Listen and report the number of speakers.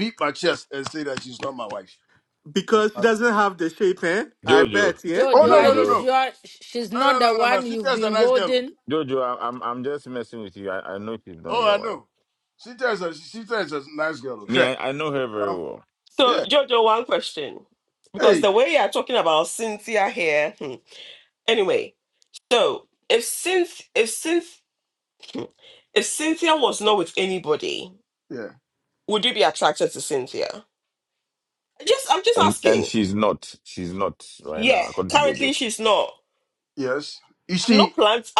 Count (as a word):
five